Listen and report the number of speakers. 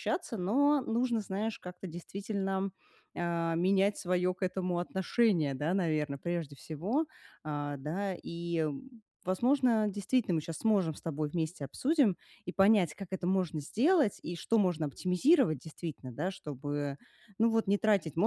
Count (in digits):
1